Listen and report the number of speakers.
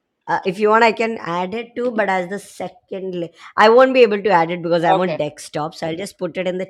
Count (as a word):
one